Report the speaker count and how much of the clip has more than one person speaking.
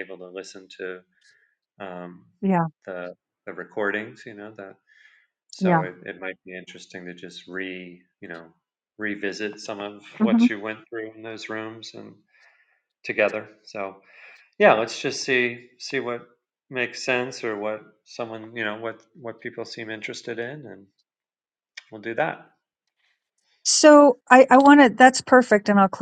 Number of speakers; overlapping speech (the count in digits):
2, about 2%